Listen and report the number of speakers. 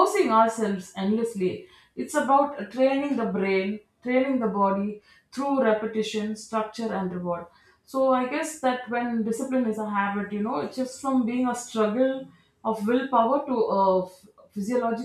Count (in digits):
1